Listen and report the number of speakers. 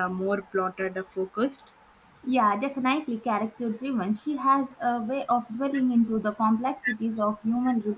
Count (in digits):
2